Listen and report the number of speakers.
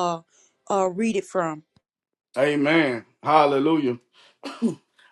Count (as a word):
two